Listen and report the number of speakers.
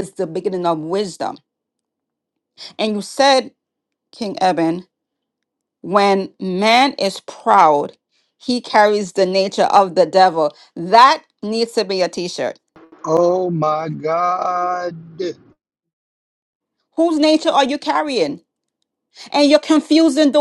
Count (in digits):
2